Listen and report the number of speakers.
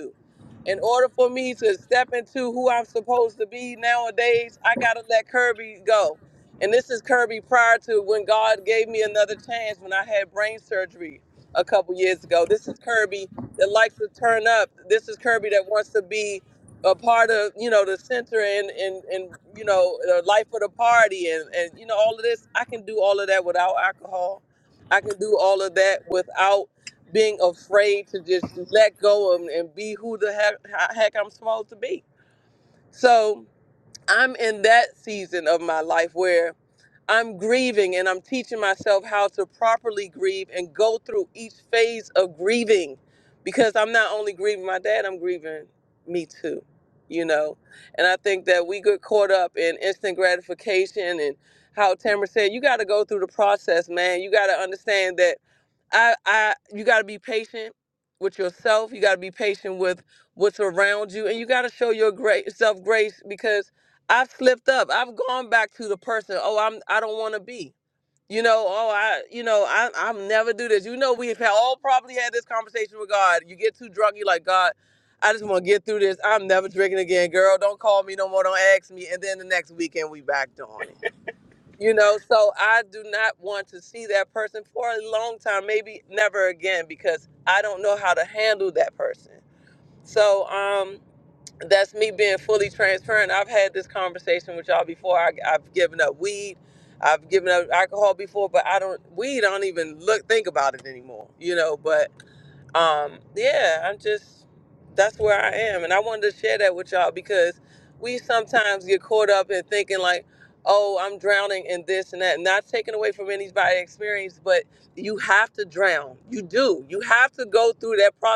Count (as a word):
one